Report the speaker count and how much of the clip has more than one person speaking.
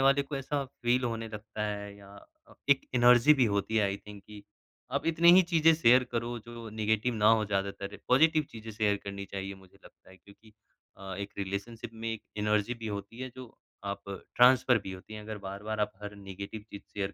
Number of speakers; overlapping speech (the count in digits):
1, no overlap